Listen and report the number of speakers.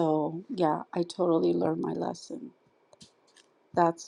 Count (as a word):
one